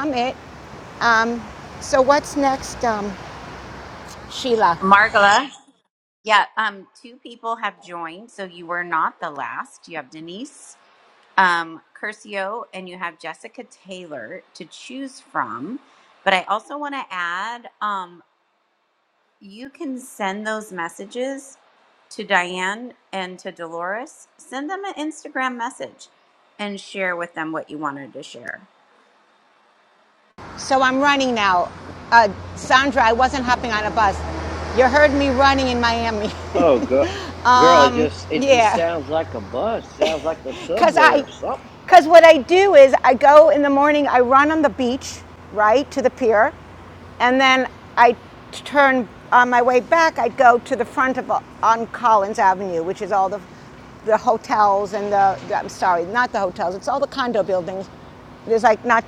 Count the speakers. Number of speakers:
3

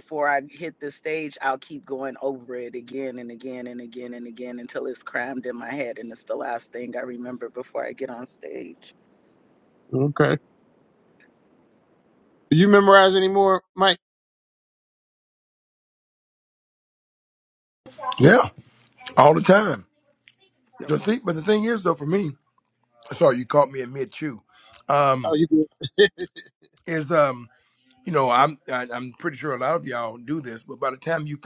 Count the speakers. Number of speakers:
3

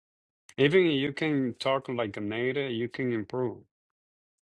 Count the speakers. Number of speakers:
1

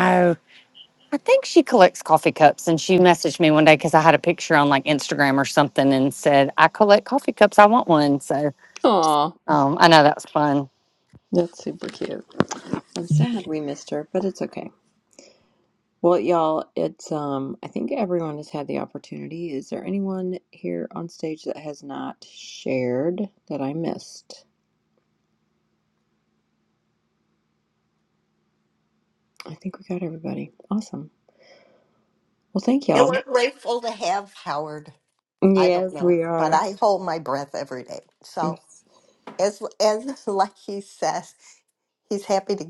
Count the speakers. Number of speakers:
3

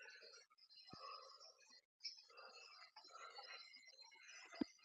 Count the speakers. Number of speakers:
0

